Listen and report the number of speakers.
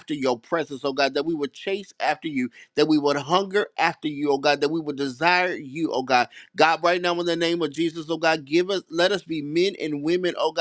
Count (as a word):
one